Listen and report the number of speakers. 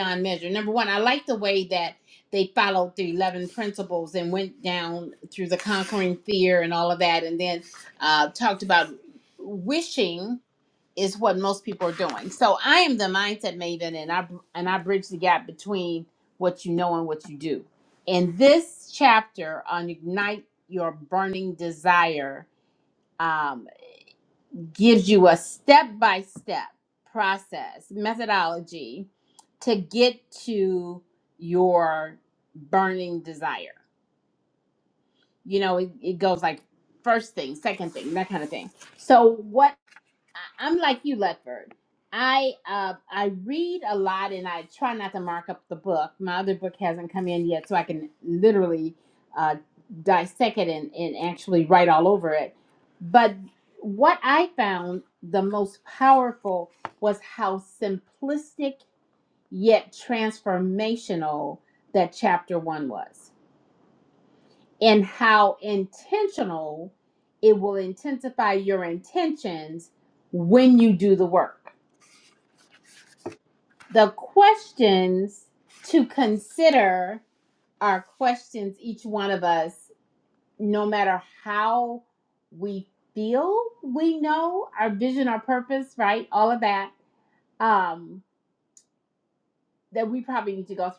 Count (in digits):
1